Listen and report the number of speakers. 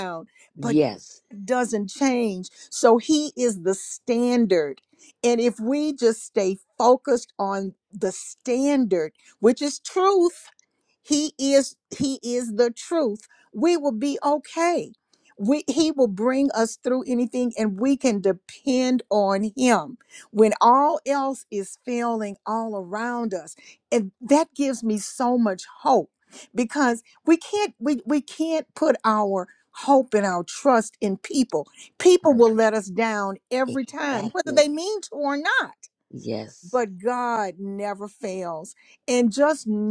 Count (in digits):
2